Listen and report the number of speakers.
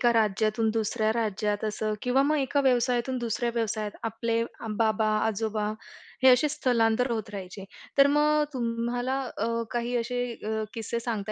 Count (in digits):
1